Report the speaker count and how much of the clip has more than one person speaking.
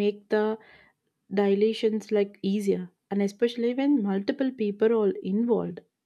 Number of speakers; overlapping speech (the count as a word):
one, no overlap